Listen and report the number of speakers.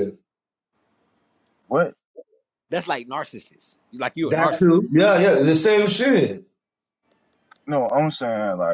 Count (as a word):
three